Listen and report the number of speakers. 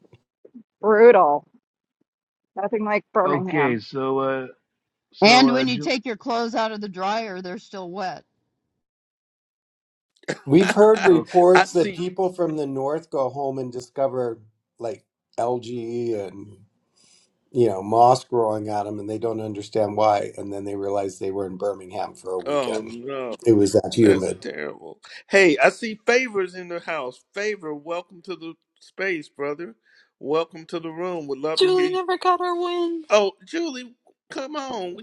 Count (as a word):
six